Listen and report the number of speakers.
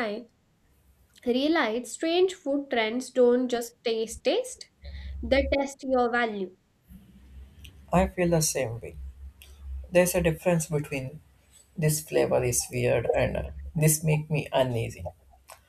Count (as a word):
two